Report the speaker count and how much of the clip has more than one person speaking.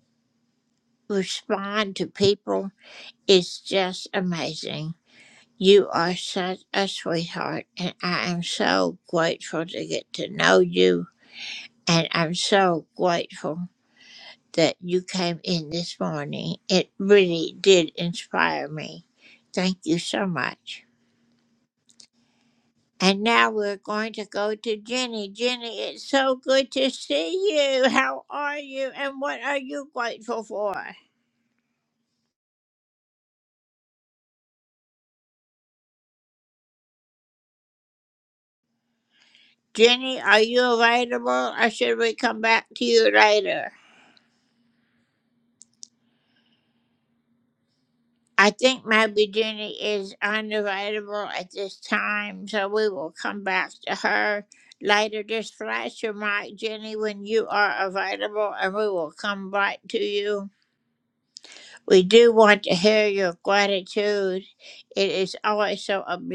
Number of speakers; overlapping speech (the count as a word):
one, no overlap